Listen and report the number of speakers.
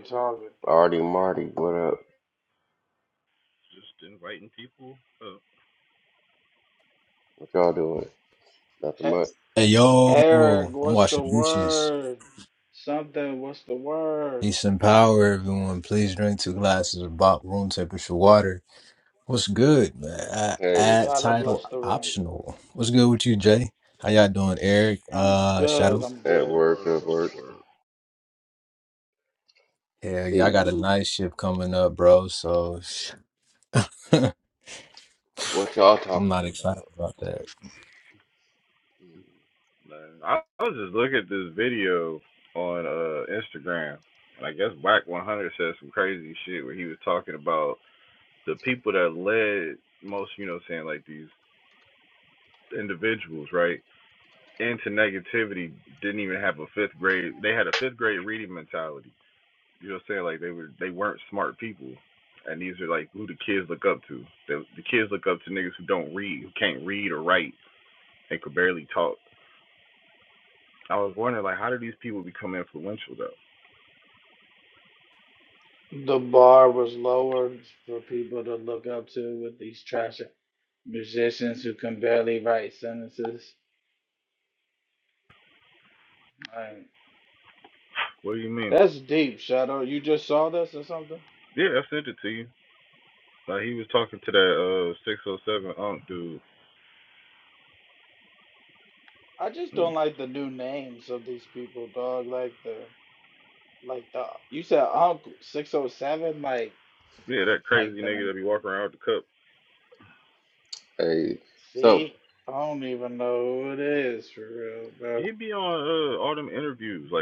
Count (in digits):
4